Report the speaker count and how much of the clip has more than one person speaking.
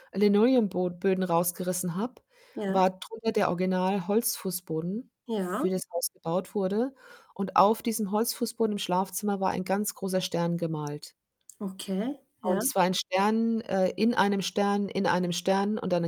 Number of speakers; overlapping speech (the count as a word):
two, about 3%